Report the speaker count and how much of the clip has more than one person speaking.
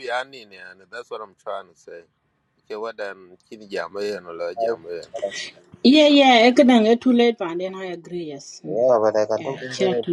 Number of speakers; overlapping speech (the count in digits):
3, about 10%